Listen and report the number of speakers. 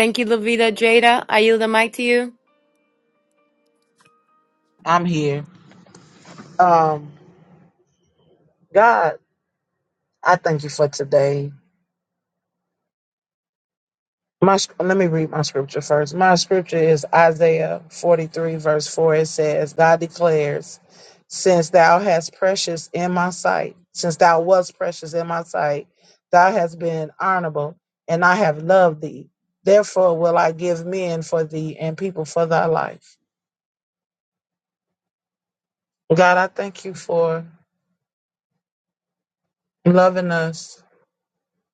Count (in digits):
2